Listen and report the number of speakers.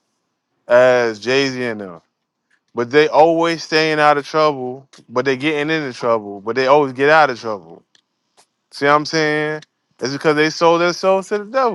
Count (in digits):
1